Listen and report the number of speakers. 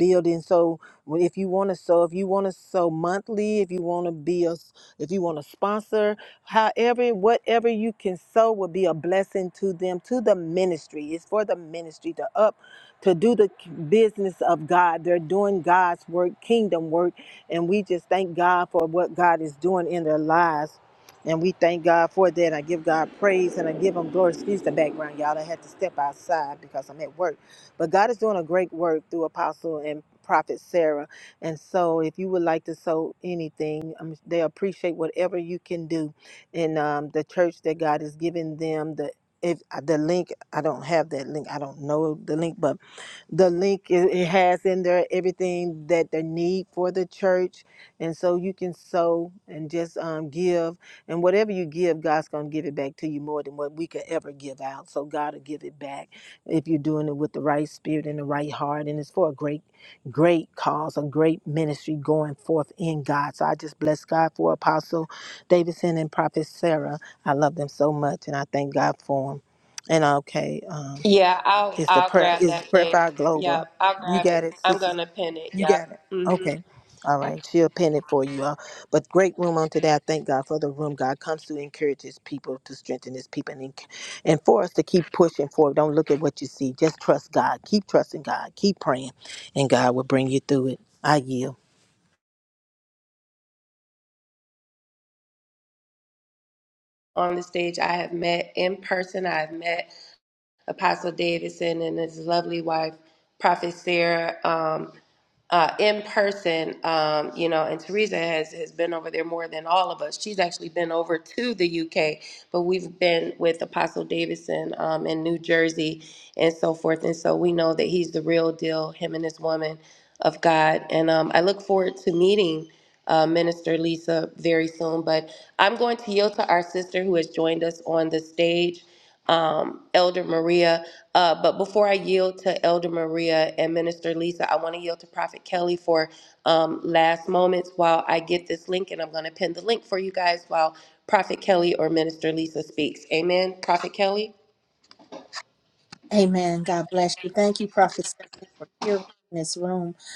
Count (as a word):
three